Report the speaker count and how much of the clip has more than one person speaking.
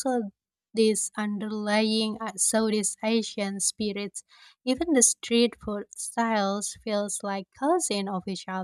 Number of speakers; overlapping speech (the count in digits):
1, no overlap